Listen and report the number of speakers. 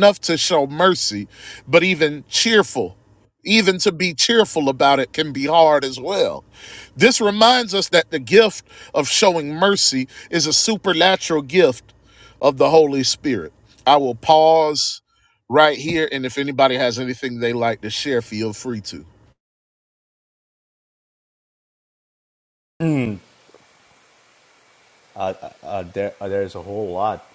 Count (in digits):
2